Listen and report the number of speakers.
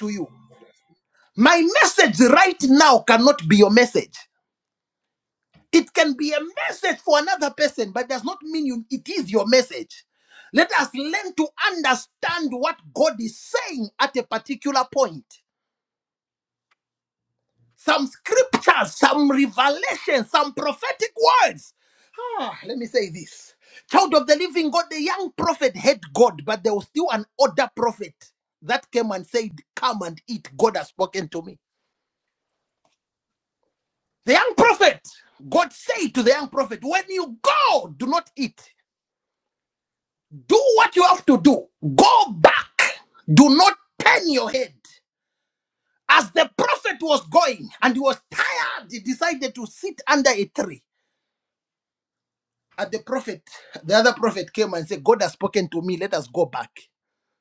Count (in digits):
1